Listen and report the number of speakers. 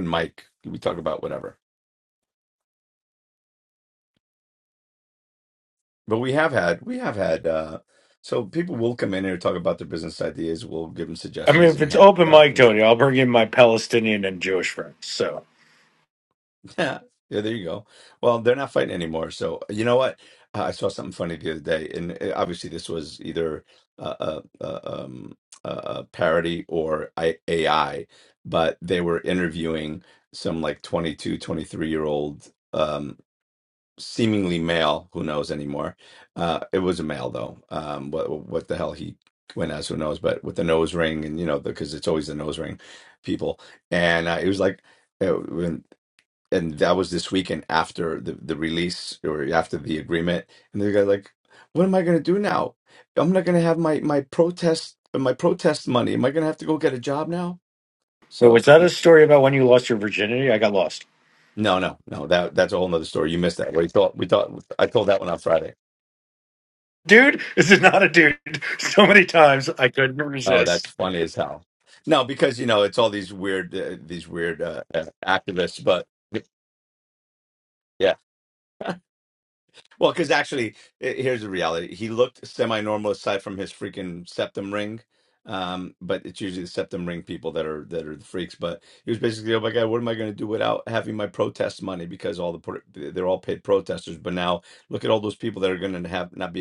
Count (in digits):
2